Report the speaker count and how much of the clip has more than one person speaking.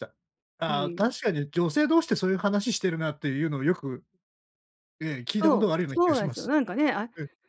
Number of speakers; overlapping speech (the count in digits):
2, about 19%